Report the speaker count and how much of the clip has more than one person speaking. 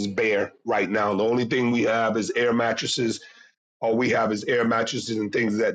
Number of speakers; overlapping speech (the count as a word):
one, no overlap